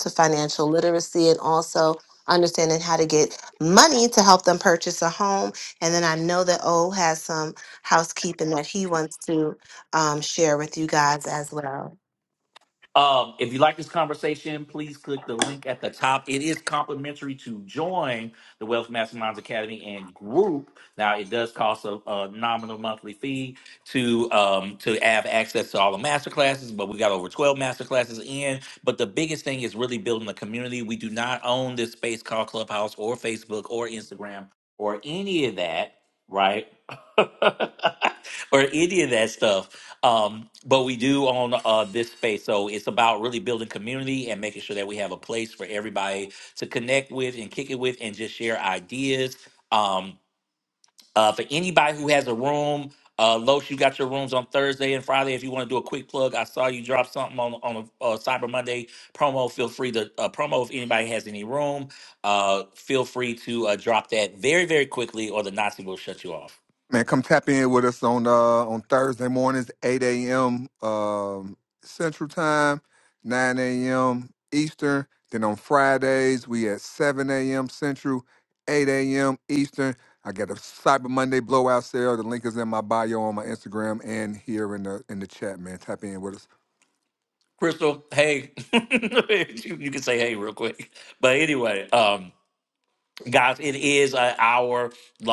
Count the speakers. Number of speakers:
3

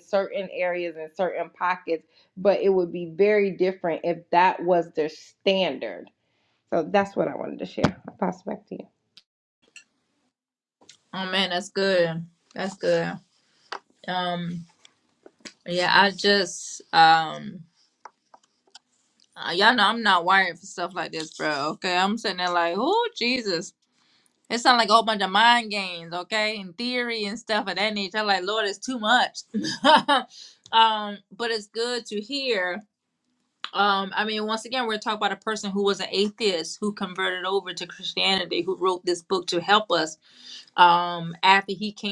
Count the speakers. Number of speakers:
2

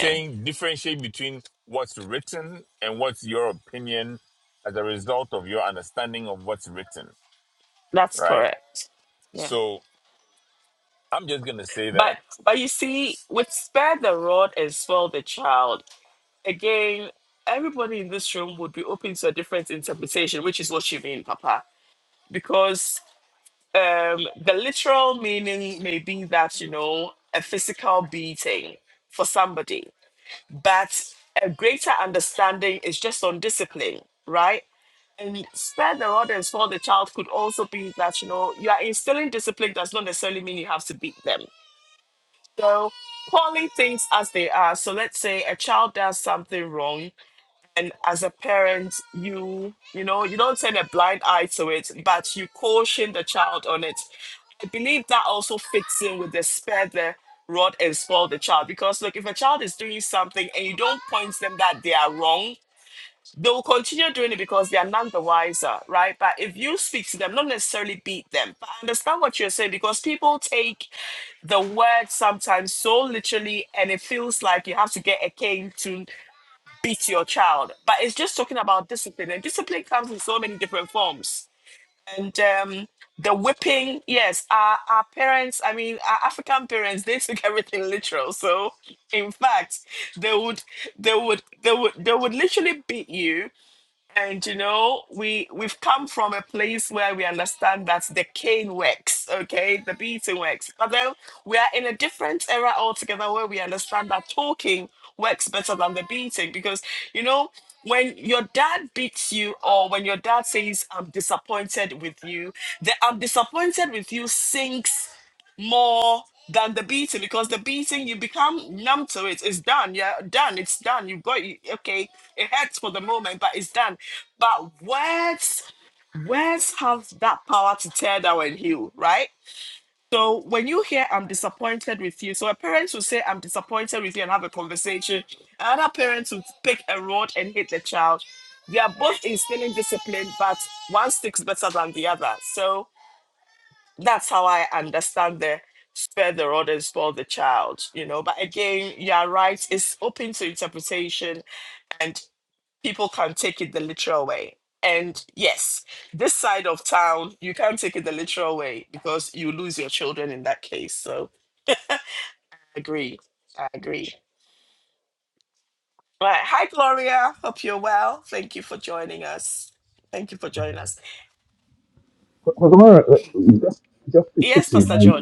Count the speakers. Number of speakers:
3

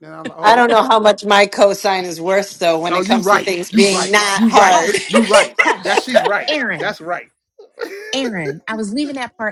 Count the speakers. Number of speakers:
3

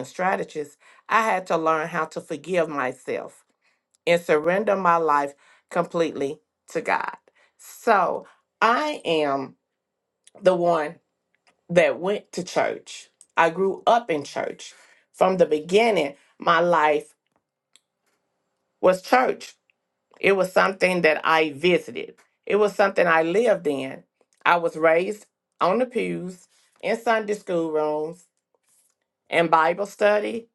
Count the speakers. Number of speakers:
1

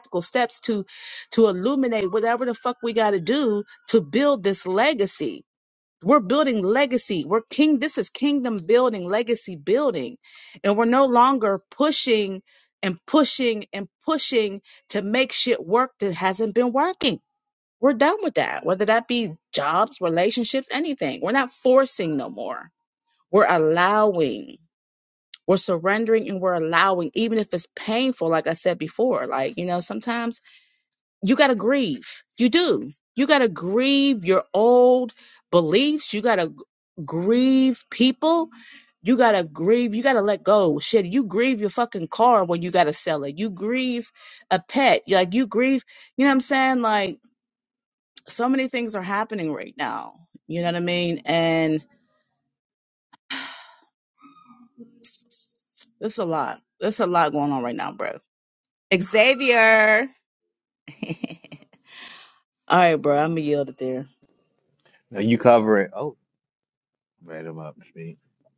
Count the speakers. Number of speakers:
2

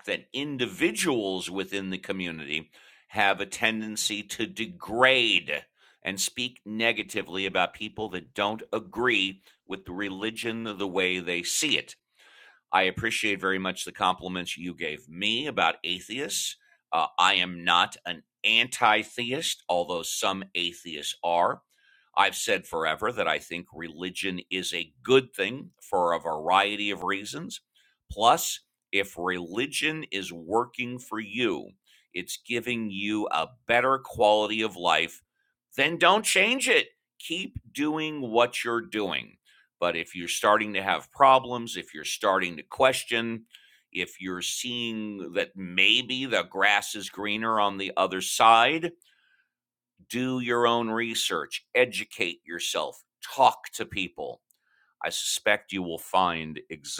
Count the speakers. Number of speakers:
1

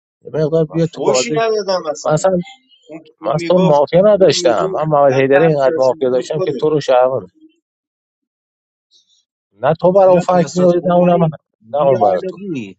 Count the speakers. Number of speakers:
3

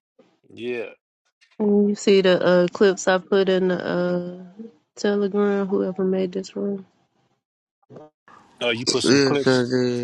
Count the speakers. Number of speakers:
3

